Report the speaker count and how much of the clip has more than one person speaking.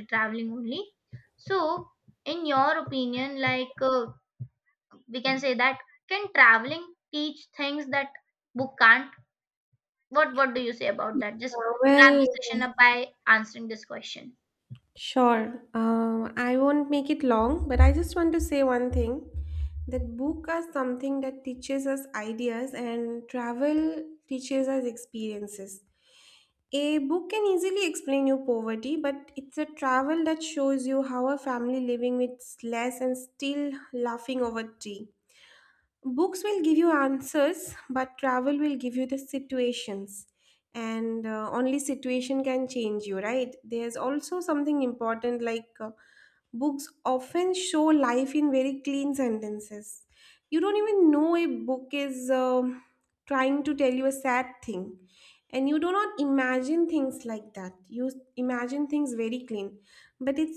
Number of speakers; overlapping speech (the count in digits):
2, about 1%